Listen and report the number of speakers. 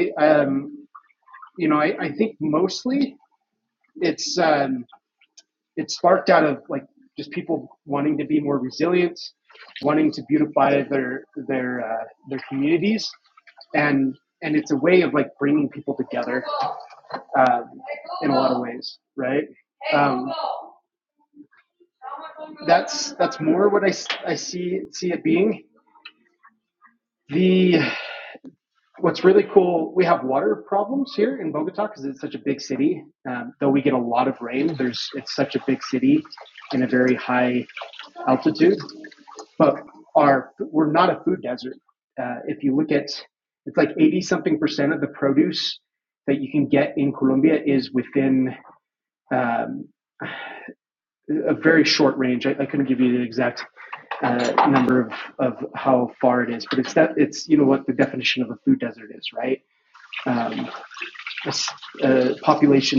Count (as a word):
one